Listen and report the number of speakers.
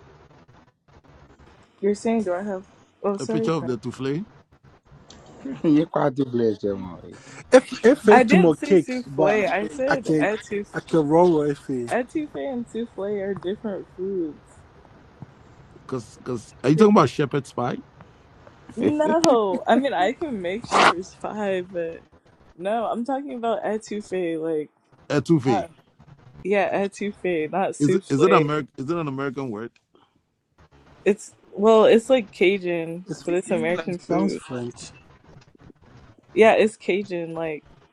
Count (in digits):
4